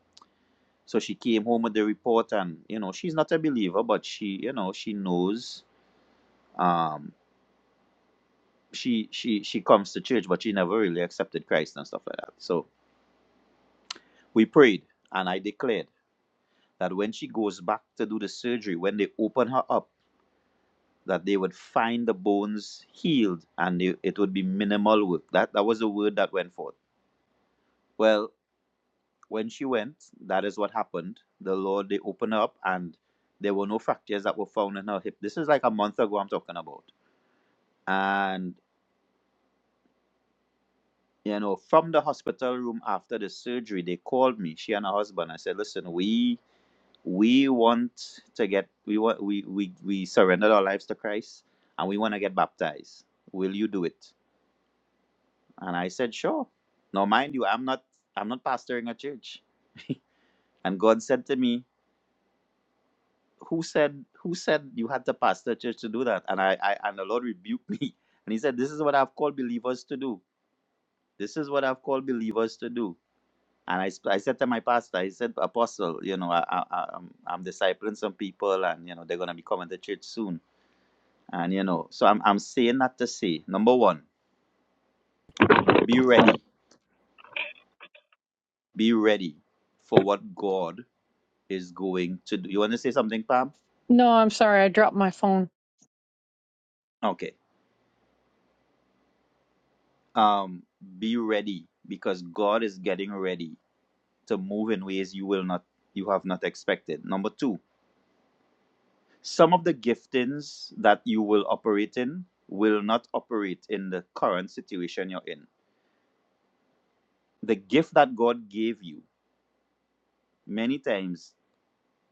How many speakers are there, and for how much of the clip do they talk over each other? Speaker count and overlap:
two, no overlap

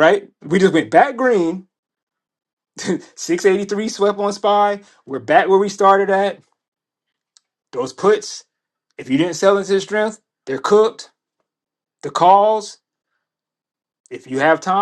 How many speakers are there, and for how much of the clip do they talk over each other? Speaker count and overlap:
one, no overlap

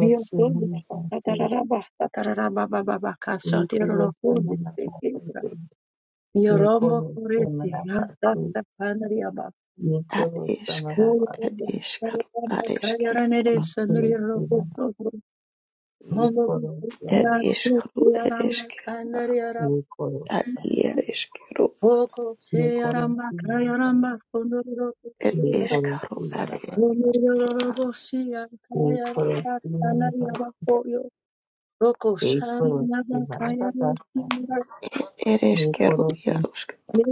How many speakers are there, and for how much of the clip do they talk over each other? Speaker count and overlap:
three, about 43%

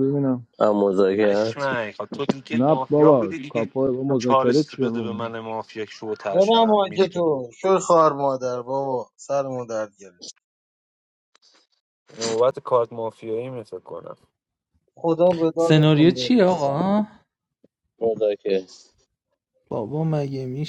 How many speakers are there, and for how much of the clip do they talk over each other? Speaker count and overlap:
five, about 21%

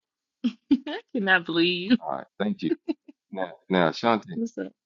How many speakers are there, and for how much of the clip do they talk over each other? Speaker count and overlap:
two, about 1%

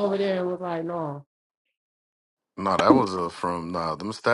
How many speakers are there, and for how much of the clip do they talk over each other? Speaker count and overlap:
two, no overlap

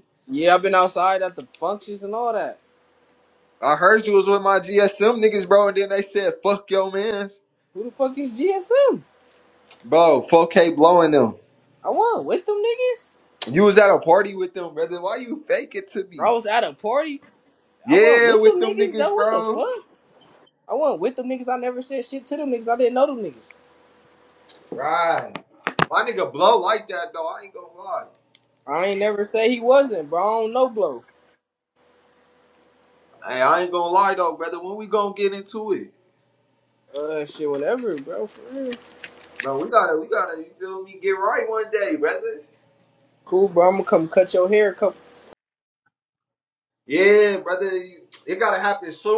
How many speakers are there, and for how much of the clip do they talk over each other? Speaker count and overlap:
two, about 4%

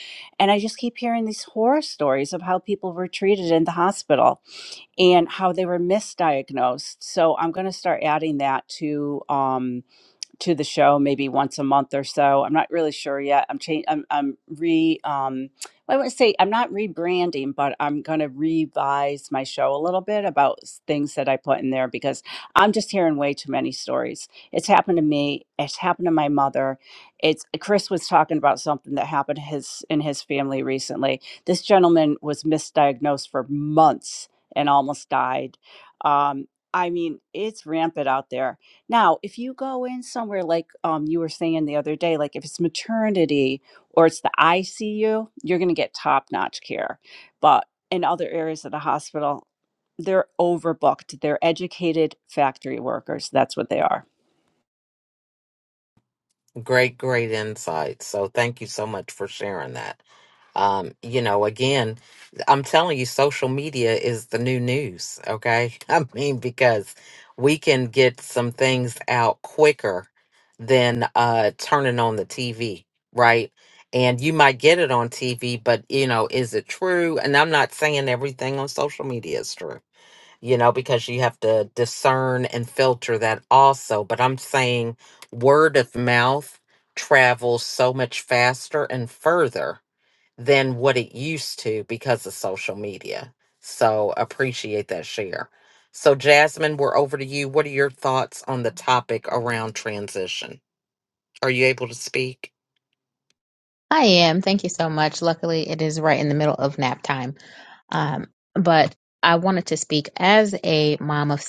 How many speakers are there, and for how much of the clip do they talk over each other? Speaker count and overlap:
three, no overlap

